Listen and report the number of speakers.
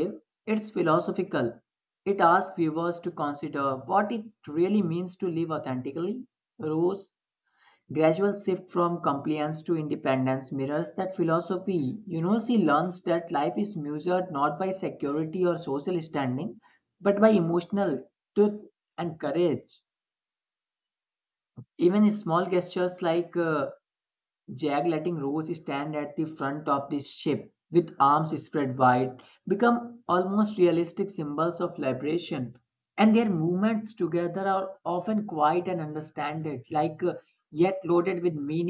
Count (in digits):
1